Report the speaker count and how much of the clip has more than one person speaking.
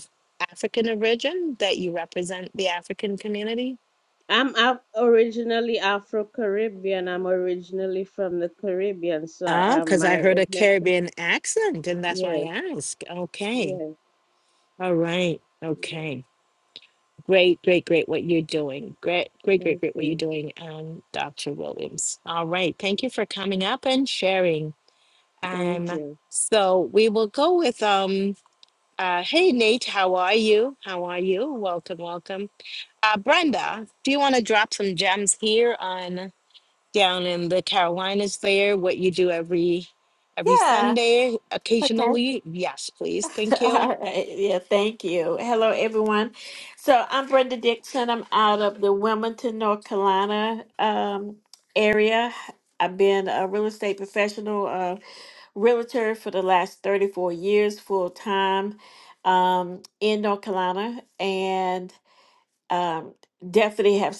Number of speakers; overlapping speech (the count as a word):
three, about 7%